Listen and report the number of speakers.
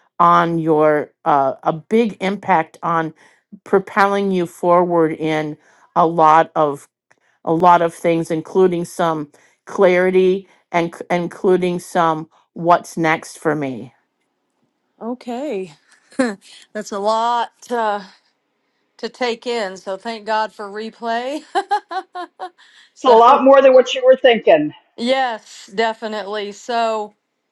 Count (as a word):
three